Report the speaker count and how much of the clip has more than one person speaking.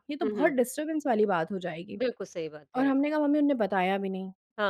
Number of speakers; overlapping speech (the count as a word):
two, about 10%